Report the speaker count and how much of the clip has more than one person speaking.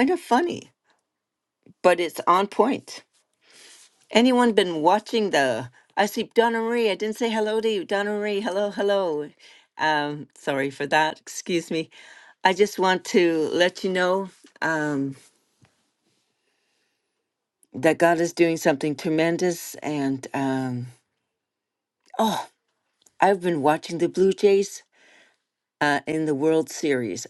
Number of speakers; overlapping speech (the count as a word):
one, no overlap